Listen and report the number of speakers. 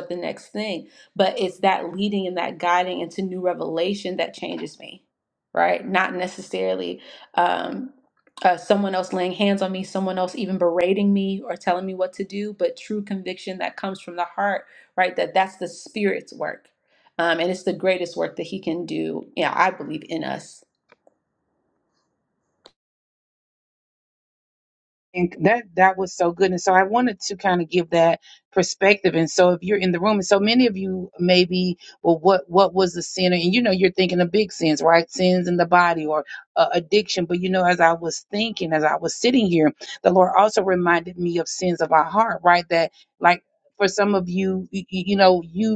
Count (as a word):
two